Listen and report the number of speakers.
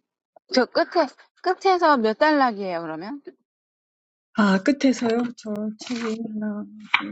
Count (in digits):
2